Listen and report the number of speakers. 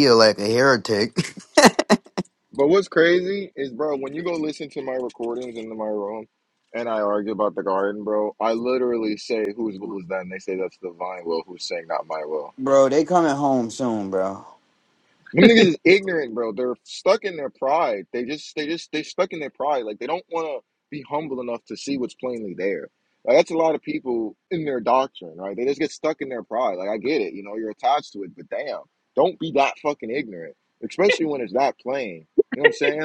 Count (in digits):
2